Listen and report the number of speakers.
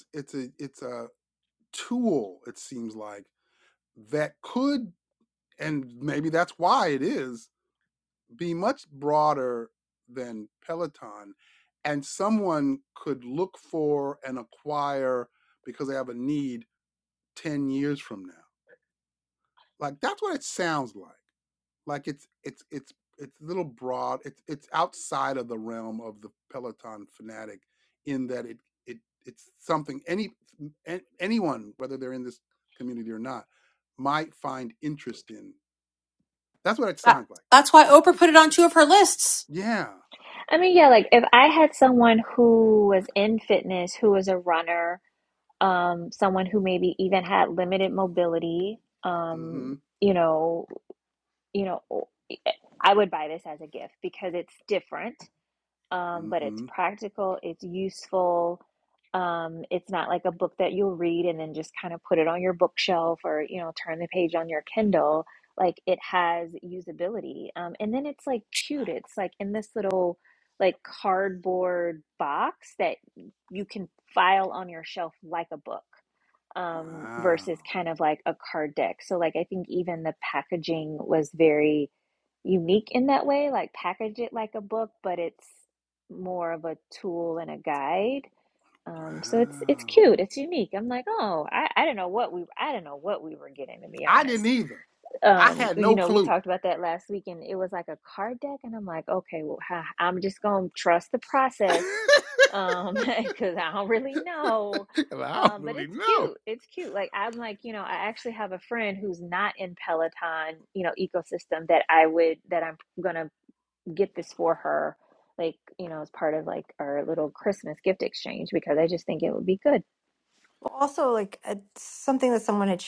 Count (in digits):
4